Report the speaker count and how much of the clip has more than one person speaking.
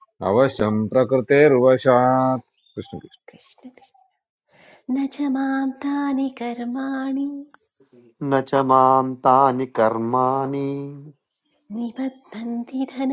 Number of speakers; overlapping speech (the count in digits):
3, no overlap